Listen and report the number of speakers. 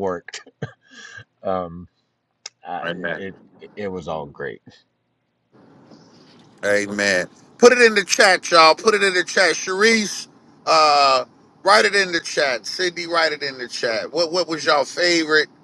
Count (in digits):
2